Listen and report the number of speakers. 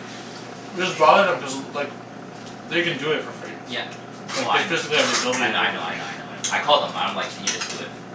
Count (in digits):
2